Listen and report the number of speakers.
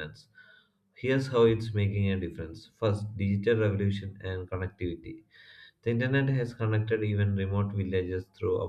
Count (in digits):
1